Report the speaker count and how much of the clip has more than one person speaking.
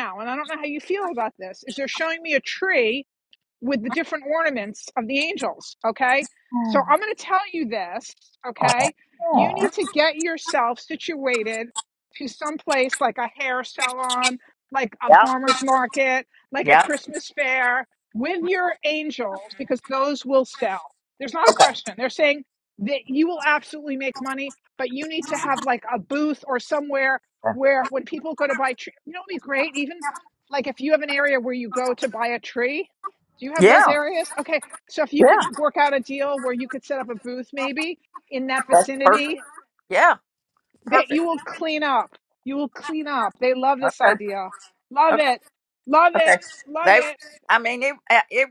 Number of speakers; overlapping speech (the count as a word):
two, about 7%